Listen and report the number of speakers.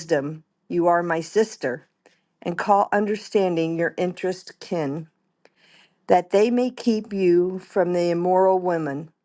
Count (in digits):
1